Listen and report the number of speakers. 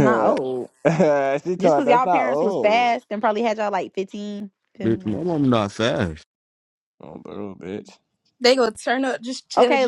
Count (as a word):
four